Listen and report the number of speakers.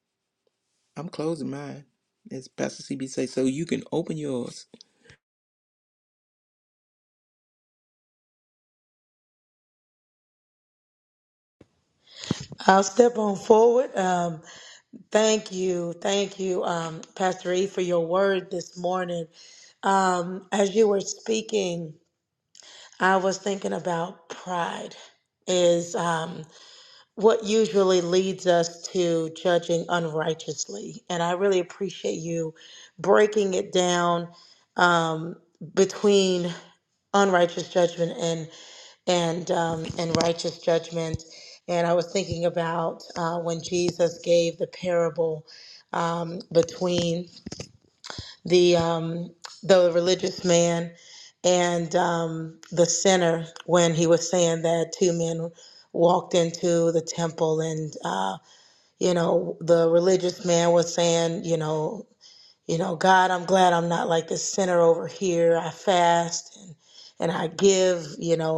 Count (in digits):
2